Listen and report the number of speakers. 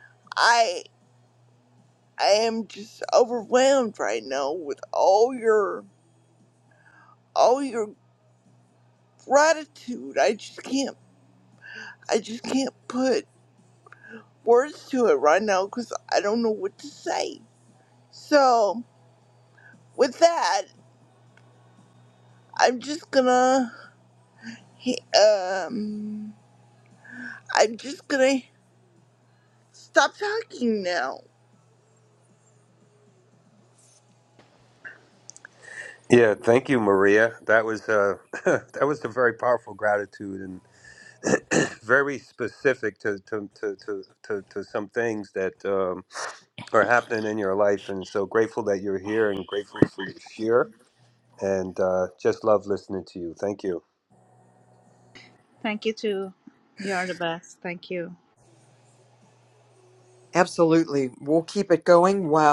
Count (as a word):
four